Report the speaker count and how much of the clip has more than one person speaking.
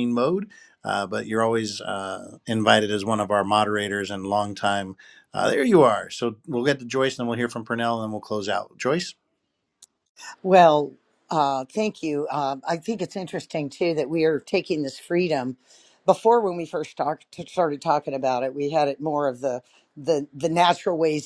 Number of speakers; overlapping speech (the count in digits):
2, no overlap